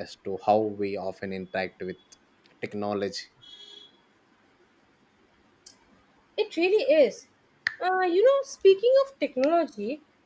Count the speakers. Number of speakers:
two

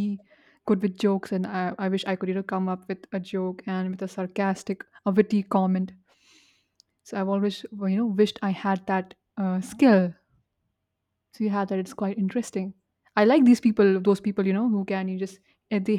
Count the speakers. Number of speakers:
one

